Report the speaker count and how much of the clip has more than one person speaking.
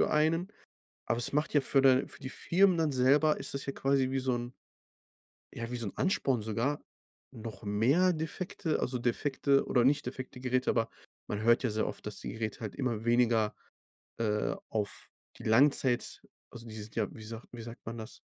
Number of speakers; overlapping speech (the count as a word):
one, no overlap